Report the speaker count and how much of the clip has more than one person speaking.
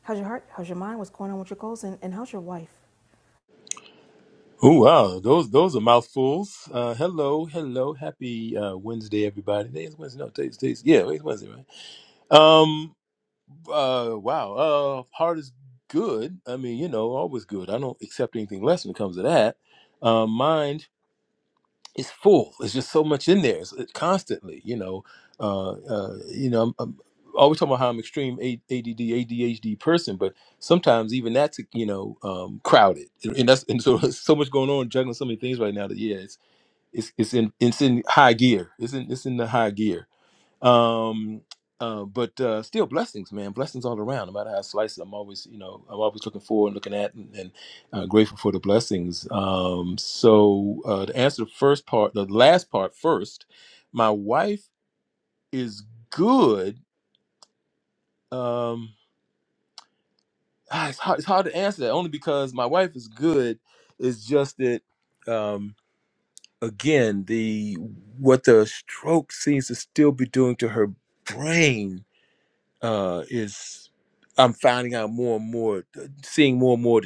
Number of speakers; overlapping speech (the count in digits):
2, no overlap